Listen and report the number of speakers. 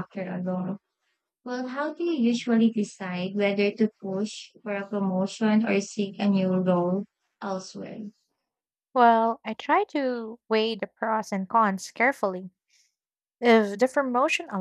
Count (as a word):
two